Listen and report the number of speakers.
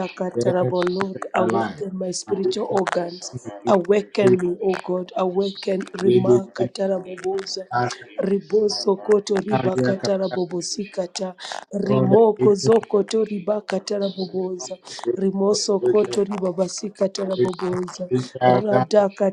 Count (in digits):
2